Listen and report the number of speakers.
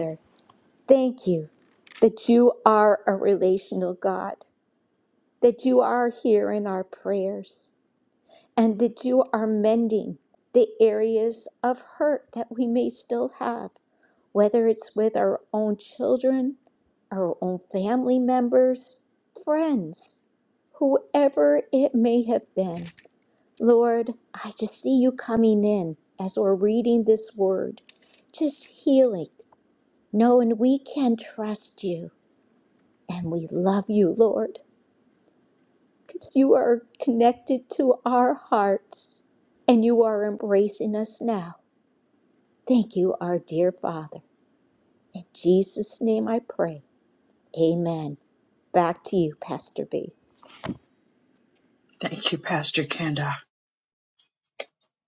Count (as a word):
two